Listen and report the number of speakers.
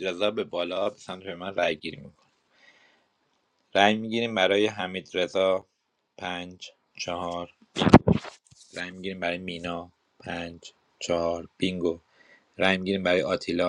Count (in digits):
1